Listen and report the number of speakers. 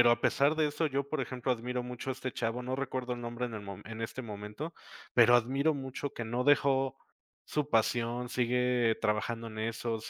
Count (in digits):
1